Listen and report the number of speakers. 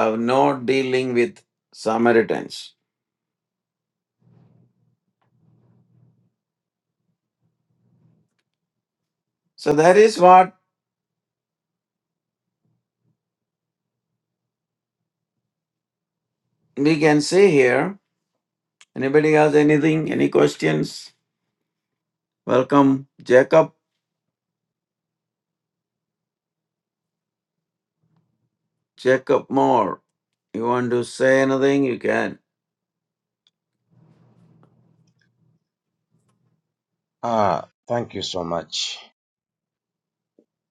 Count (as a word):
two